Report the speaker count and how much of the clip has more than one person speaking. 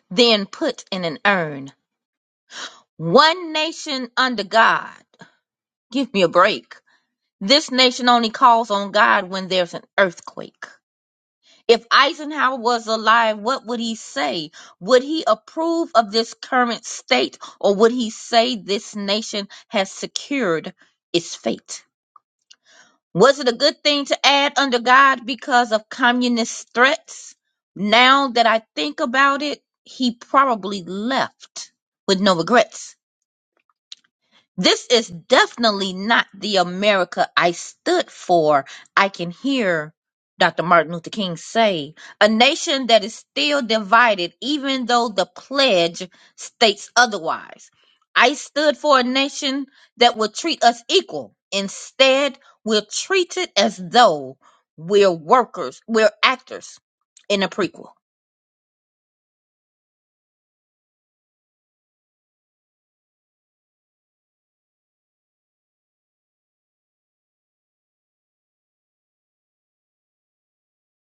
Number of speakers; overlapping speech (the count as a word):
one, no overlap